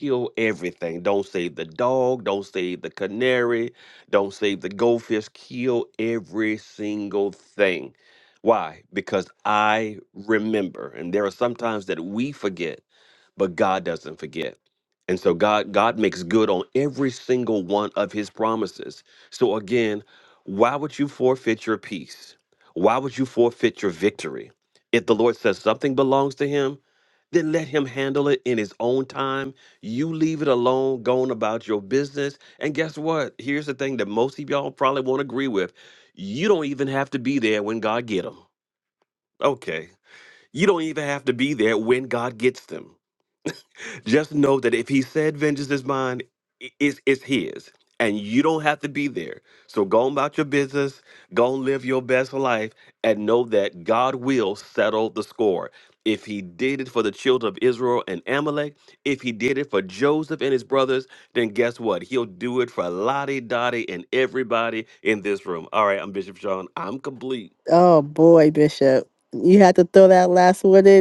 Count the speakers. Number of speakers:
2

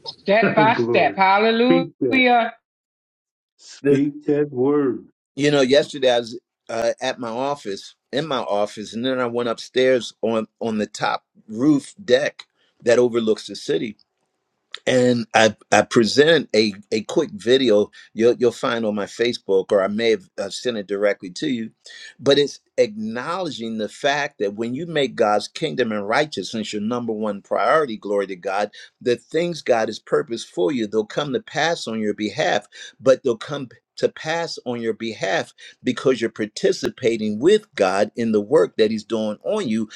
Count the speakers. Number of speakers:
3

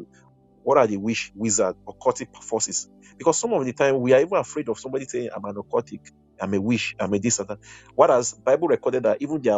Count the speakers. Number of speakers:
1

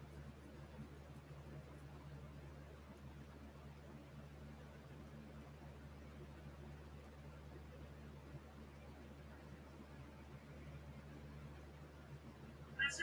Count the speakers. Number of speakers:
0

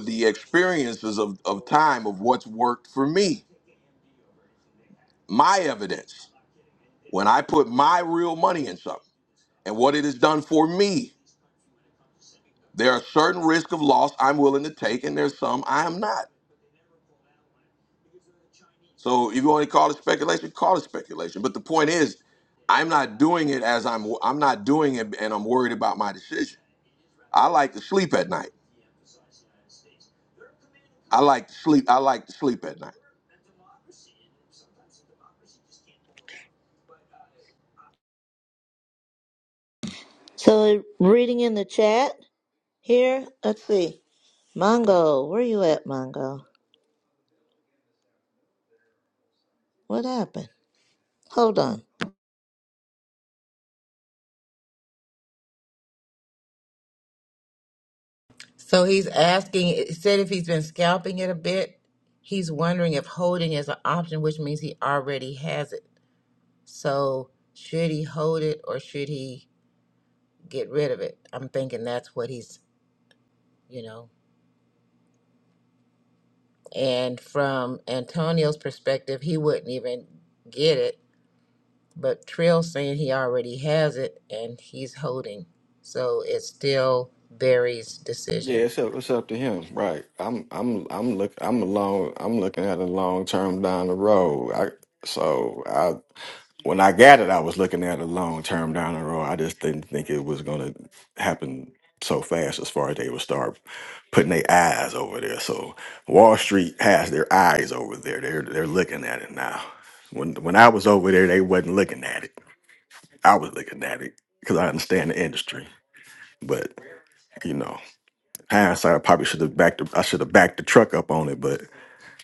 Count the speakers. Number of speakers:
4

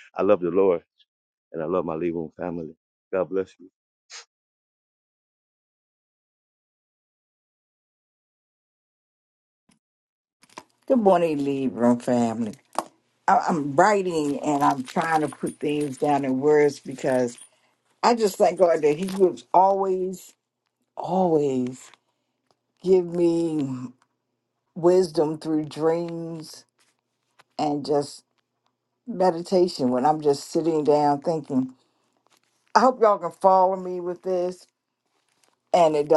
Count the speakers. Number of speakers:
2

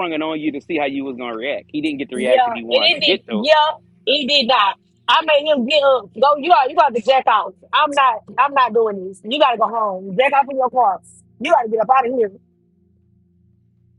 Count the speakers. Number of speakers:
2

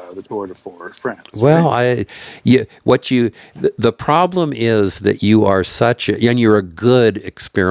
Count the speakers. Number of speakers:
2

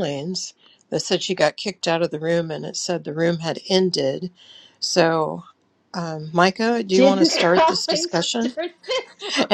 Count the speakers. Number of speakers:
2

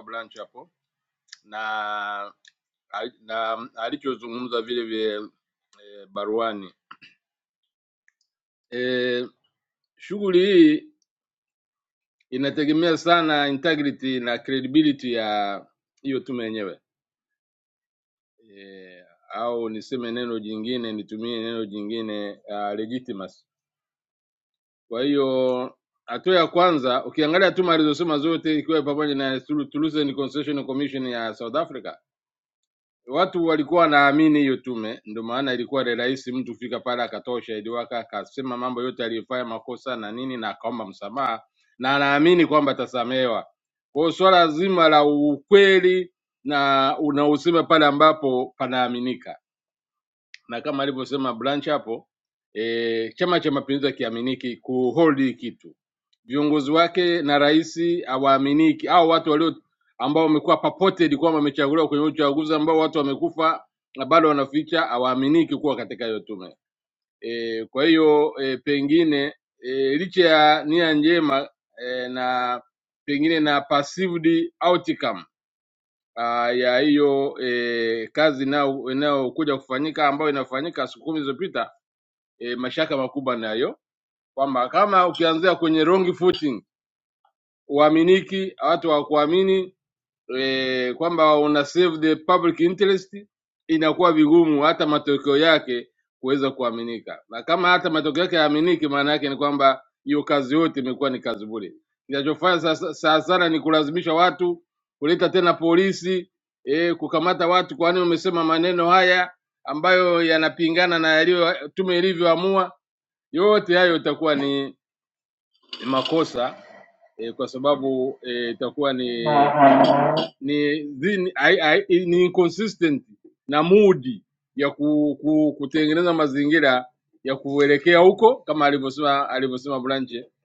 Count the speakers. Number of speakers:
1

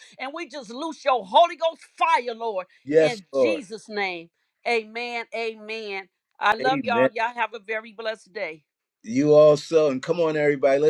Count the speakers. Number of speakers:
2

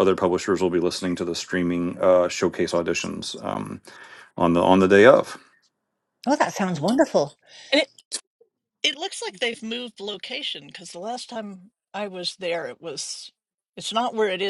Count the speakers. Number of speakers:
3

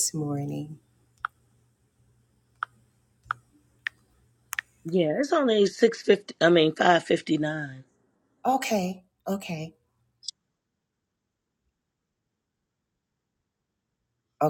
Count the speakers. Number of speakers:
2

